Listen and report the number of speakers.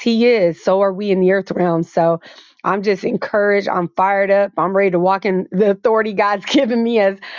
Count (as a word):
one